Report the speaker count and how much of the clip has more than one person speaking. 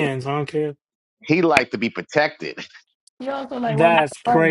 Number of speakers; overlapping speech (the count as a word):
three, about 20%